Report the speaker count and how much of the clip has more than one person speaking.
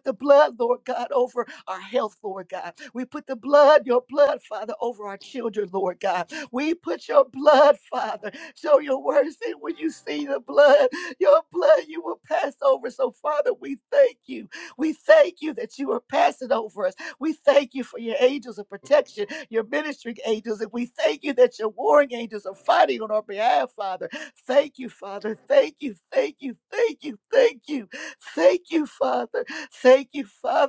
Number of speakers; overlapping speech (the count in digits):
1, no overlap